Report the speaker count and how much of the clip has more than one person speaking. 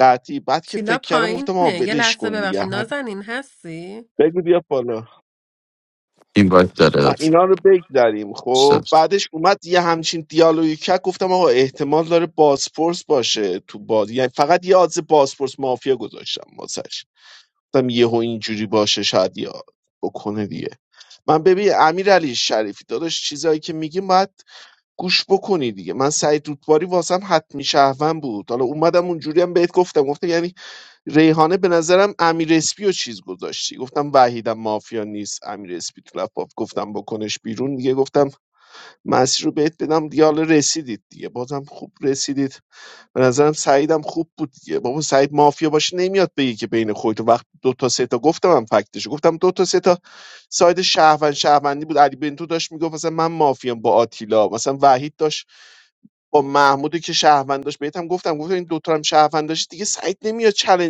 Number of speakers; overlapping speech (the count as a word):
three, about 4%